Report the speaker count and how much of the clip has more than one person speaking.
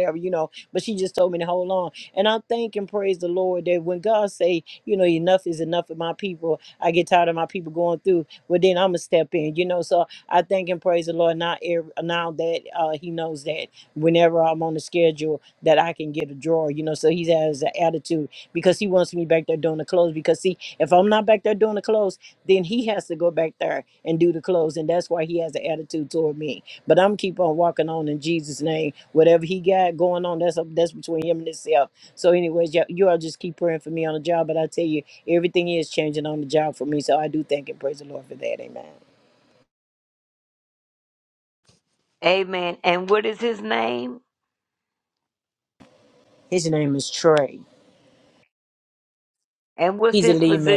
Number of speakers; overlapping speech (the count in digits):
2, about 1%